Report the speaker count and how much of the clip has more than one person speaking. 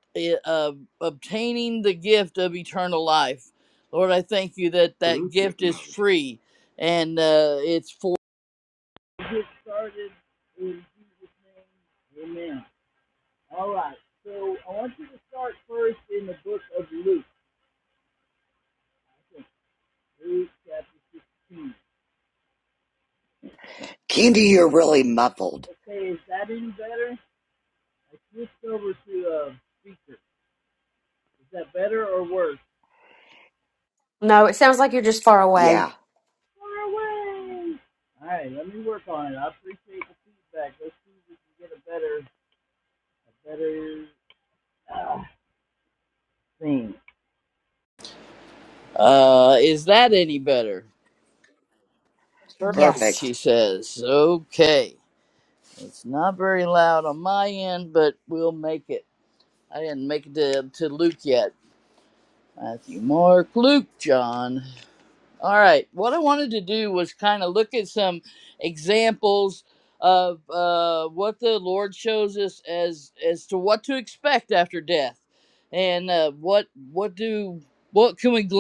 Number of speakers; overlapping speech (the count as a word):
three, about 1%